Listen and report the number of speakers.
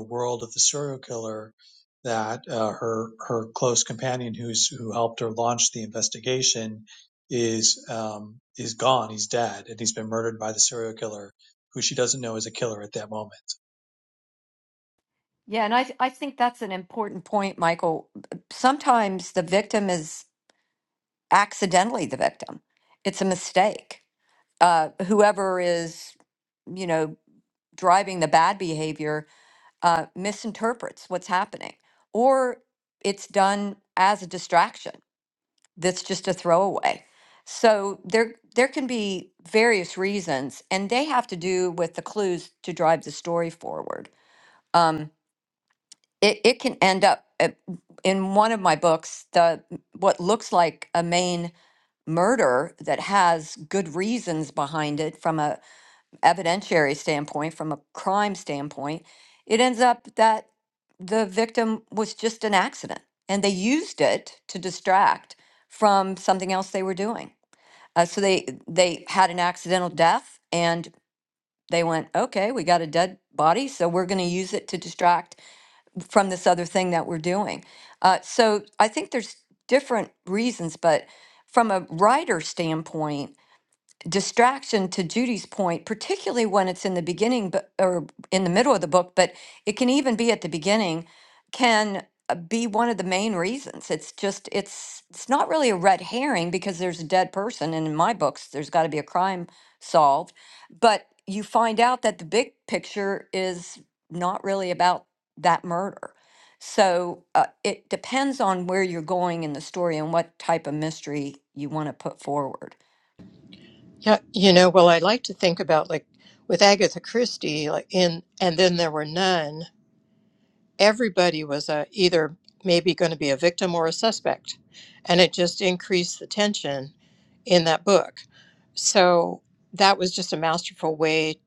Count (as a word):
three